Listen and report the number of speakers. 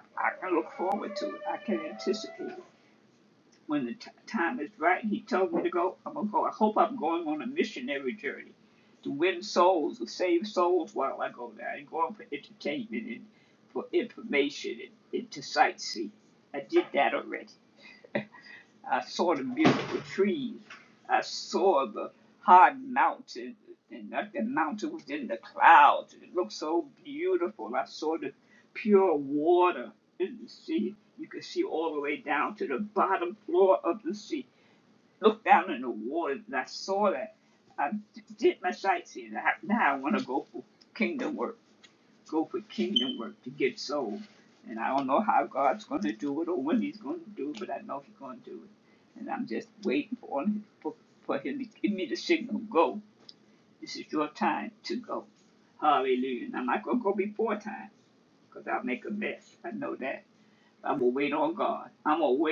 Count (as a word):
one